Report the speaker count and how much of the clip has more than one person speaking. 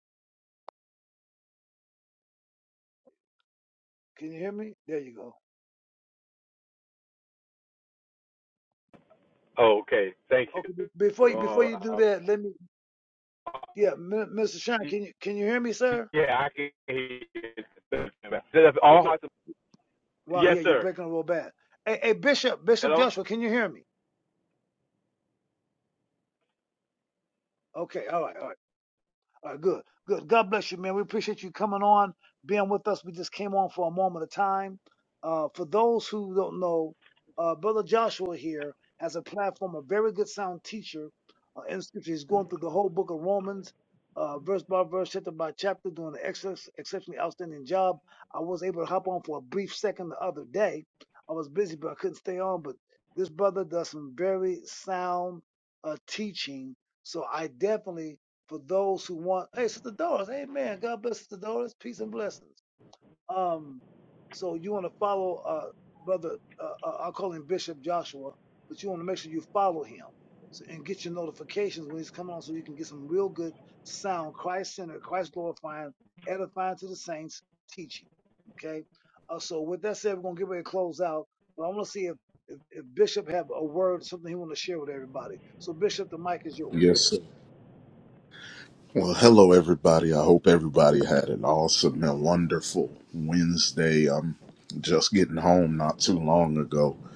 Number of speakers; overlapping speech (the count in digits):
3, about 2%